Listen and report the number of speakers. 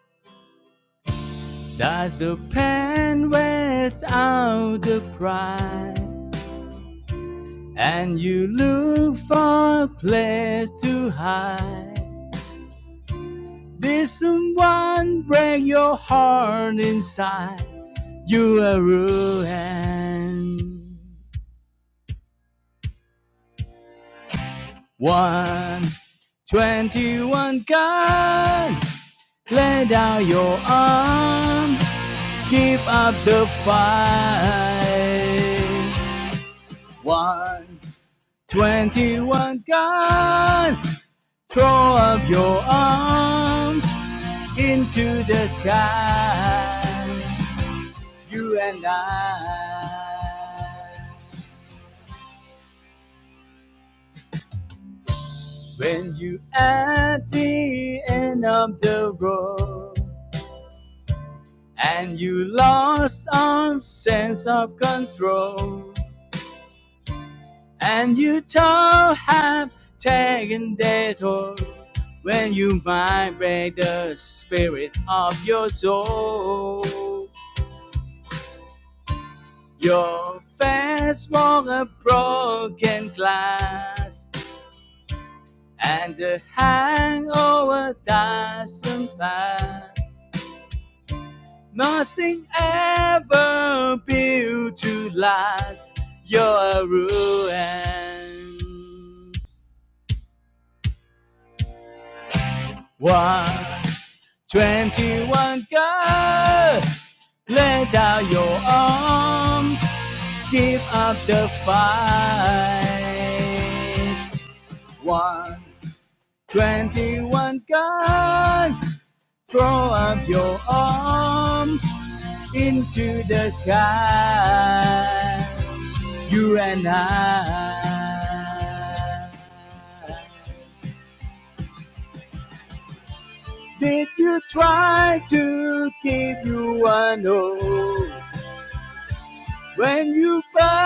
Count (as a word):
one